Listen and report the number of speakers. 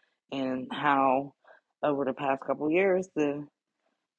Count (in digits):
1